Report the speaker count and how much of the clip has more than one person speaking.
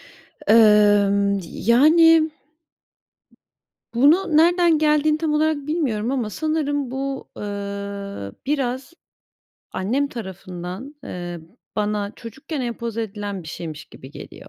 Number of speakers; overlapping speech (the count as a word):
one, no overlap